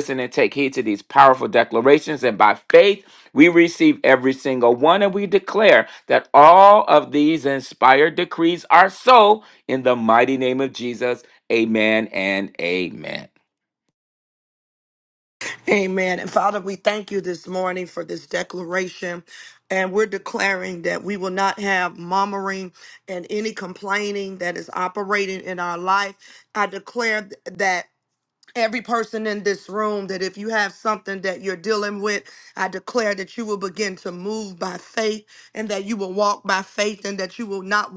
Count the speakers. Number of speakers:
2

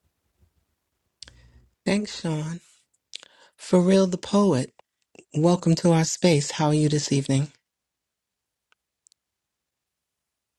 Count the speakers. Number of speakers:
1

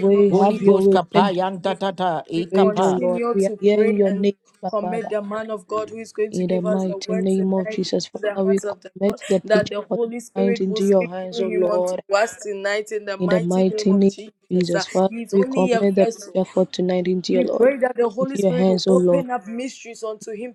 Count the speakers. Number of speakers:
3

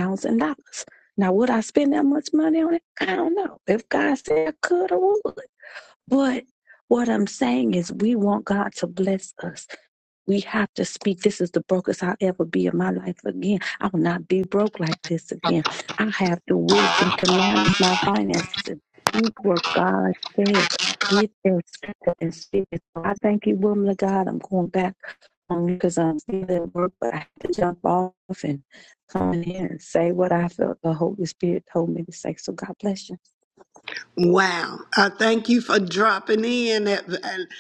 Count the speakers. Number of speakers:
2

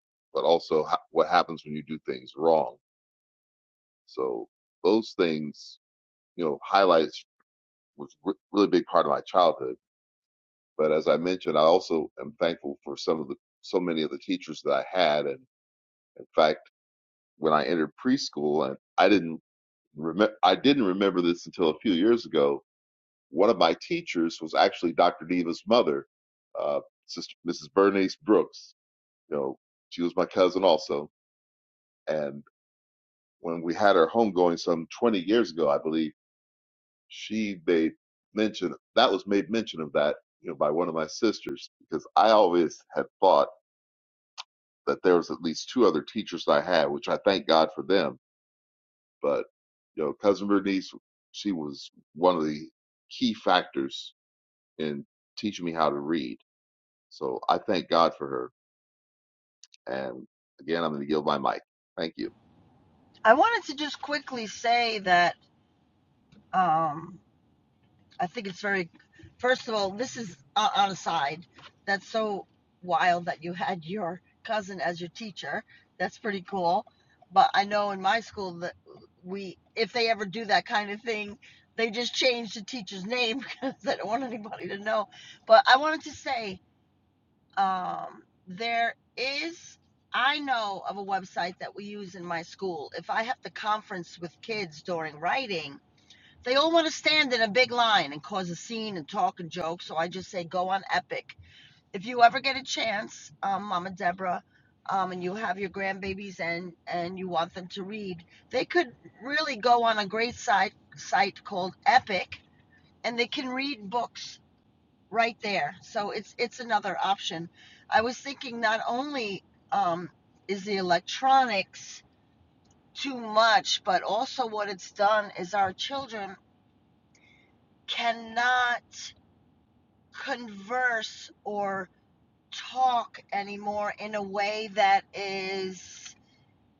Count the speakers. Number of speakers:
2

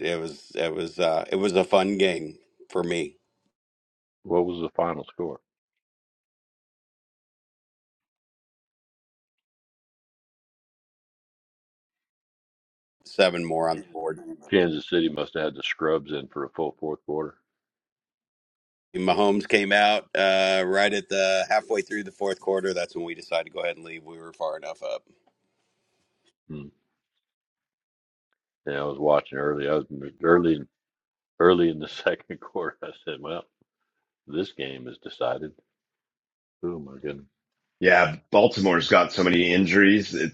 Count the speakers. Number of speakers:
3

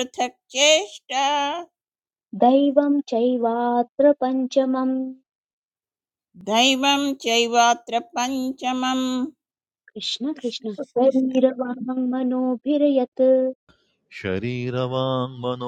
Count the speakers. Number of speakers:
3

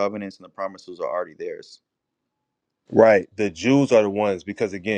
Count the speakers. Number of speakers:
2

